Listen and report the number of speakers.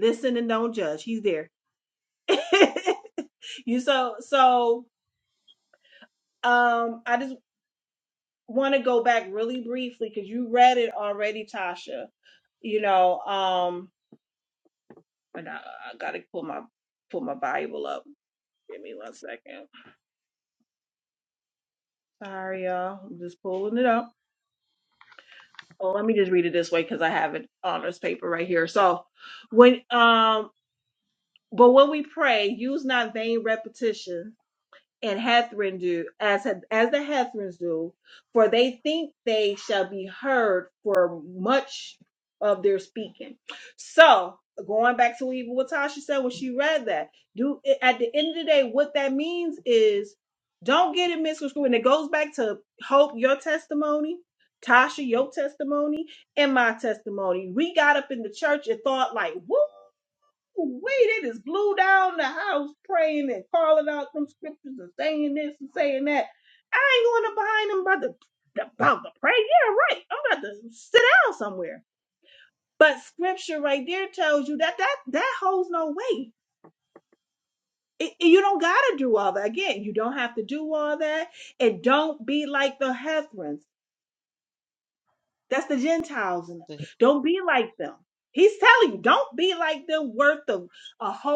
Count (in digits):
1